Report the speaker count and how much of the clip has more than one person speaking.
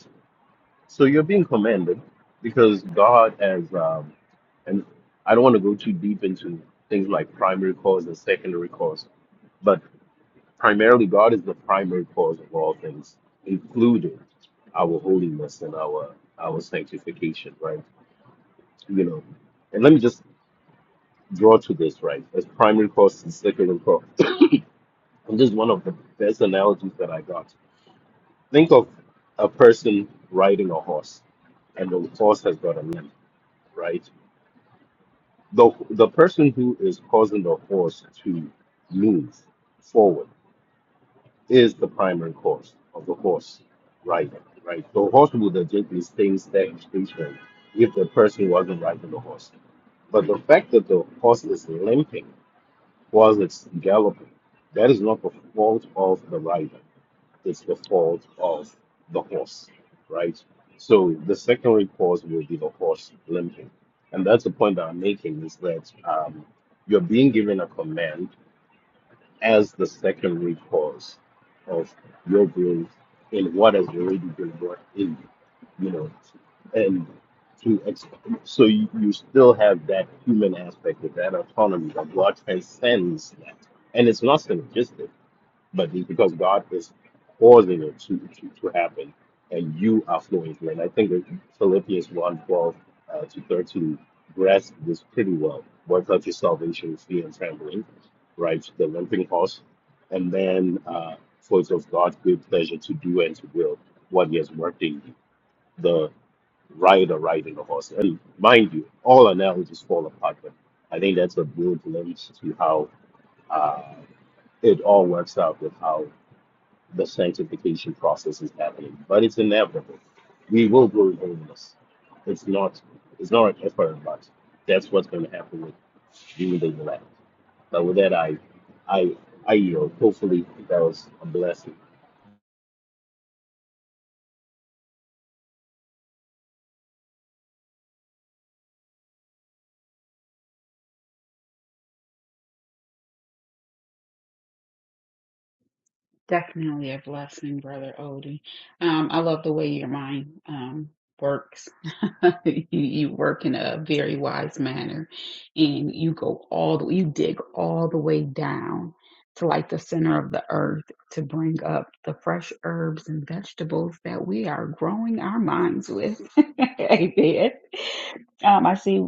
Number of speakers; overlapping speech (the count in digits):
2, no overlap